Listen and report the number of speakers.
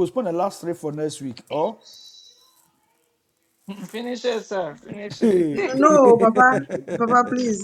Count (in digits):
3